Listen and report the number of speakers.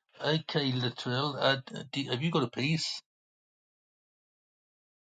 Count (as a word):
one